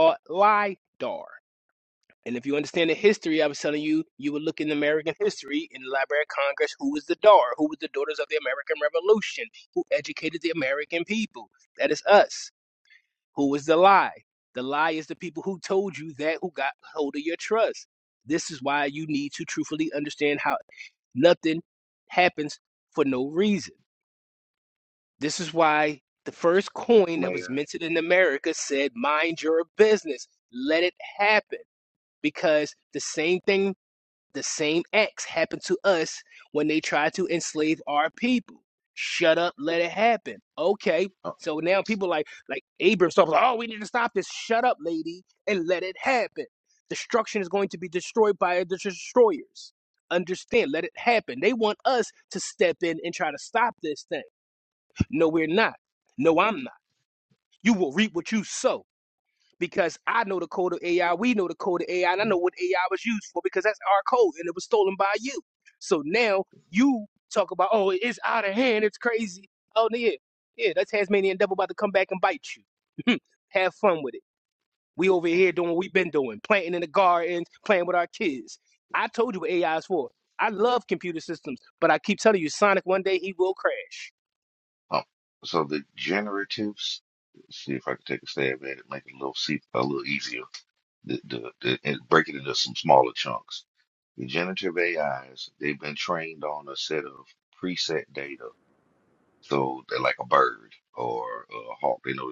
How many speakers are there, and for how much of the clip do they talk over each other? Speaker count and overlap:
2, about 1%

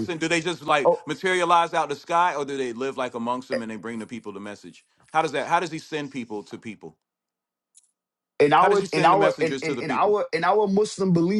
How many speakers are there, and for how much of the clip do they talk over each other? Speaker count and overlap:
2, about 16%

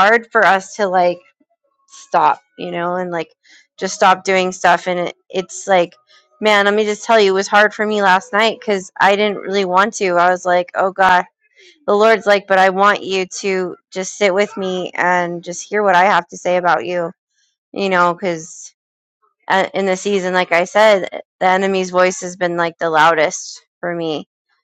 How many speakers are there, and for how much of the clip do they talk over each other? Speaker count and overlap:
1, no overlap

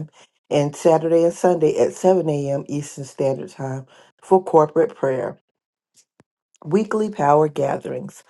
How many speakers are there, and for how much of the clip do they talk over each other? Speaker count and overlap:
1, no overlap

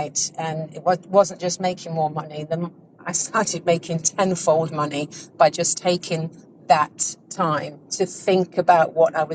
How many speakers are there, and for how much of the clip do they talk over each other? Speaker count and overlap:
1, no overlap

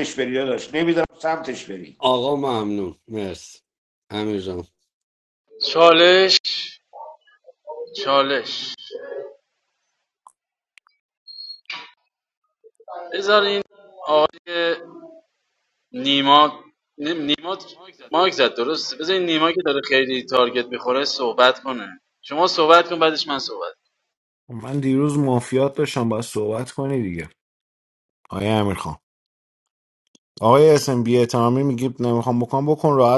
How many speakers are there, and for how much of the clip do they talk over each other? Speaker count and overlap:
4, no overlap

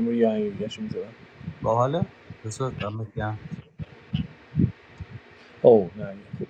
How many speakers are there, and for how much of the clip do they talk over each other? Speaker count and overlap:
2, no overlap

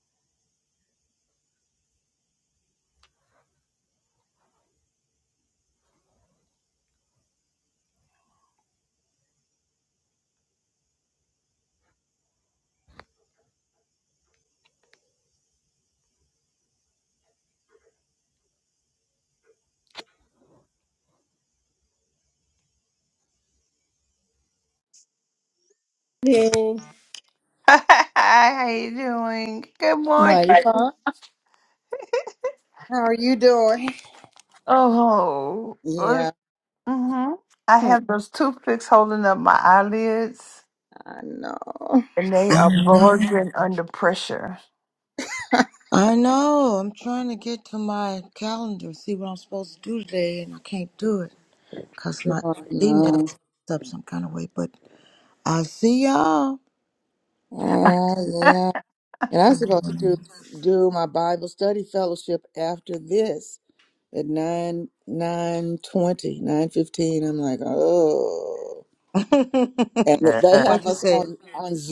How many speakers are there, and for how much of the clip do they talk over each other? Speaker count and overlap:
3, about 6%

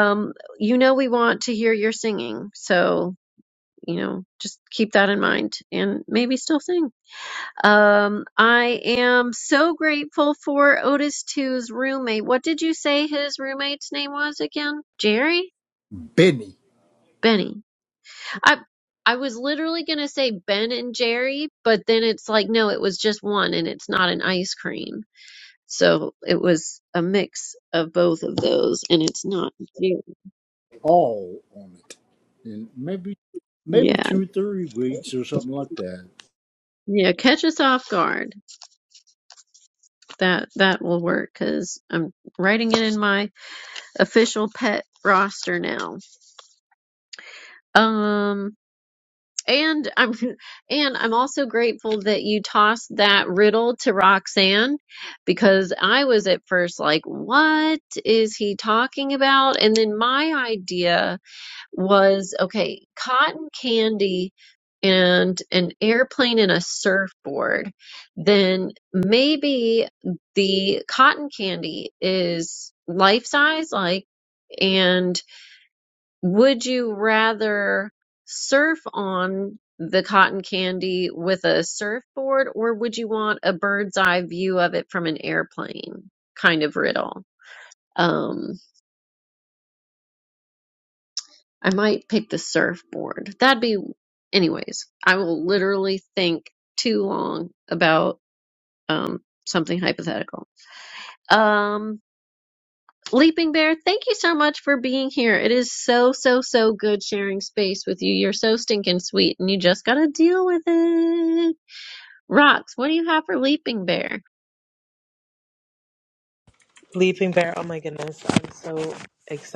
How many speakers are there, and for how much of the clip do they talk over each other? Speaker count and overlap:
3, under 1%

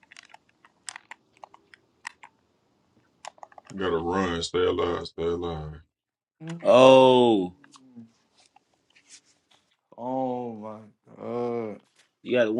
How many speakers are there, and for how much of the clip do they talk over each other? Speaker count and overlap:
3, no overlap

